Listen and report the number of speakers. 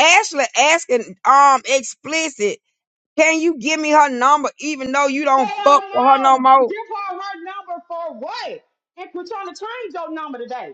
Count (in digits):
2